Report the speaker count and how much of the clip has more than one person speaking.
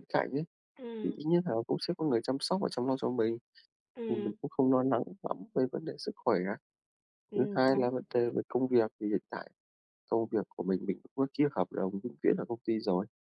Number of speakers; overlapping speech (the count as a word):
two, about 7%